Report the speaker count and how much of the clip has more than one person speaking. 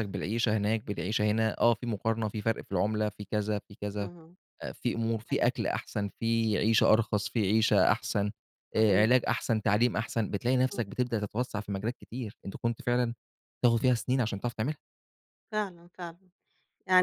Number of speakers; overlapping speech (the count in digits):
2, about 4%